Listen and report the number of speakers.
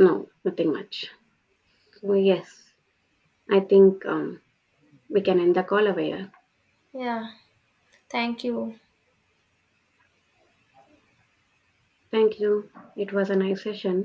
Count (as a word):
two